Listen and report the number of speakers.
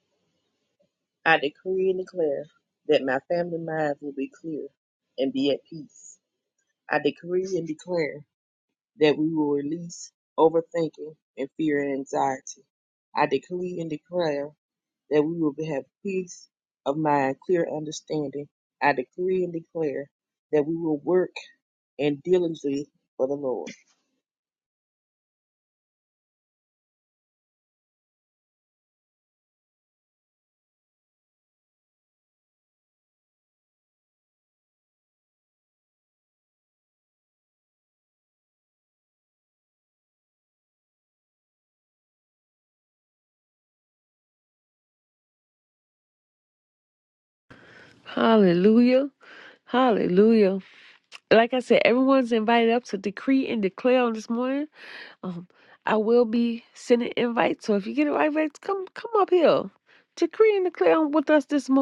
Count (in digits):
2